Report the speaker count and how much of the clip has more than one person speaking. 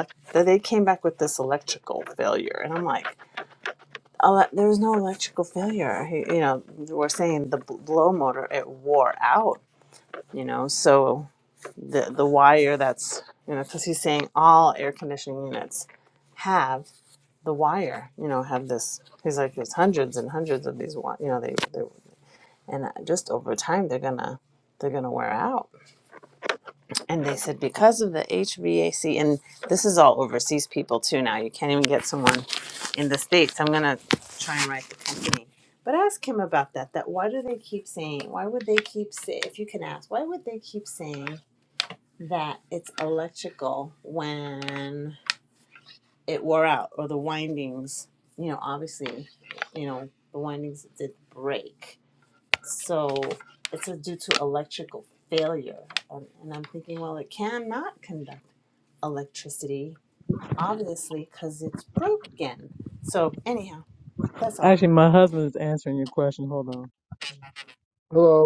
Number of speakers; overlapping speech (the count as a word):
two, under 1%